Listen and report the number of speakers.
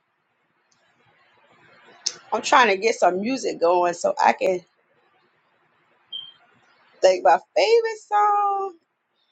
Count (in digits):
1